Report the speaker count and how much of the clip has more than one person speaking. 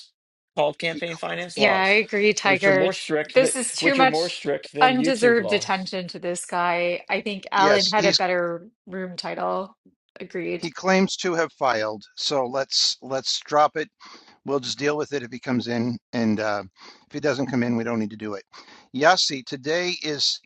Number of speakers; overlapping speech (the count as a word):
three, about 17%